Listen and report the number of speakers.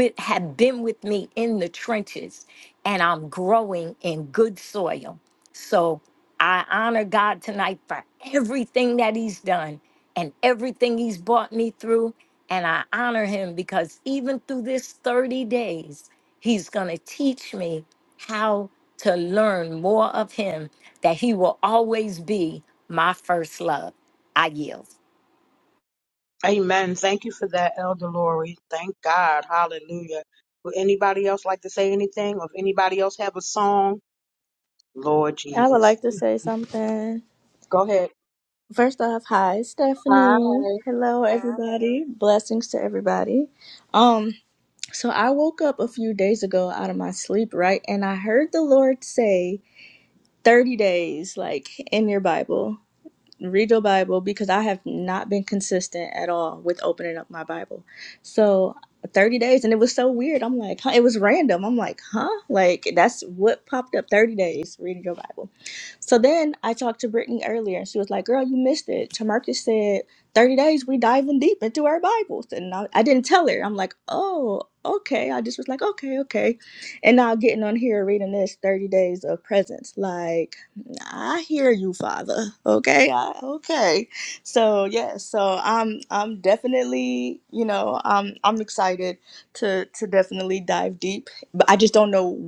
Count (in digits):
3